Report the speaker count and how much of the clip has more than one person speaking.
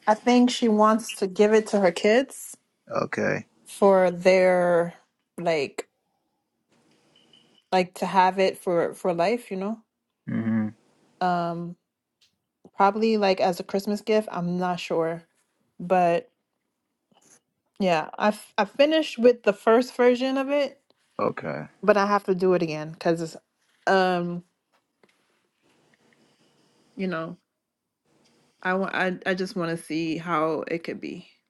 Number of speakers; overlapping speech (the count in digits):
2, no overlap